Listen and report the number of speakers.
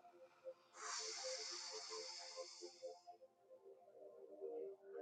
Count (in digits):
0